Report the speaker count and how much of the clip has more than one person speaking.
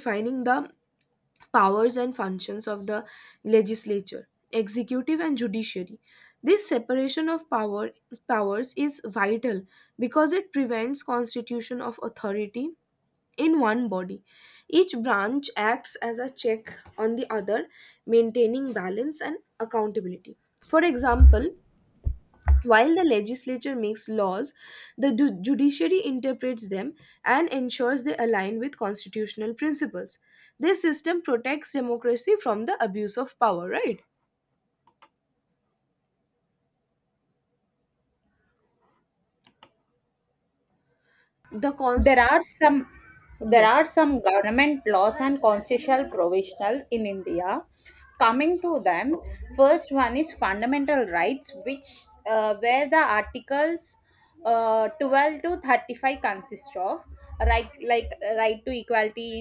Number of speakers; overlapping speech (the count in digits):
2, about 1%